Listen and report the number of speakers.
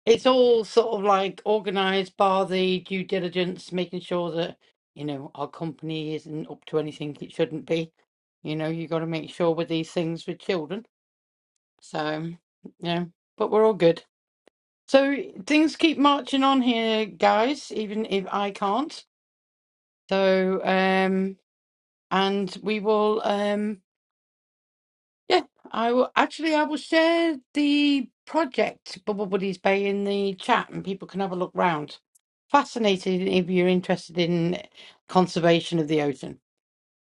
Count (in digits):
1